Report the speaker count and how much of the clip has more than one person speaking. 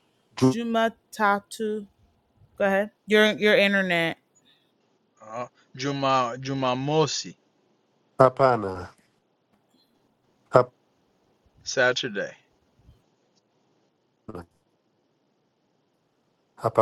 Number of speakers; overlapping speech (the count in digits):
3, under 1%